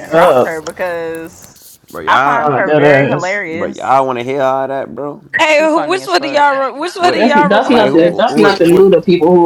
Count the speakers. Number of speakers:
four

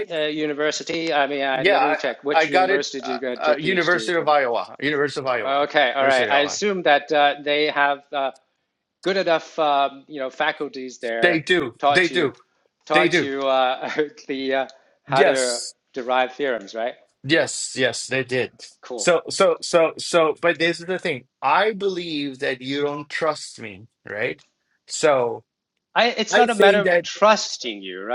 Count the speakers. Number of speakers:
two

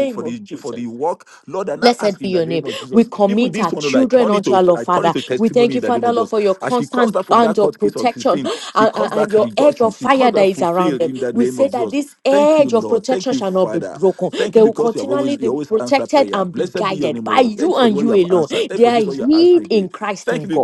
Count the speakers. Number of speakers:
two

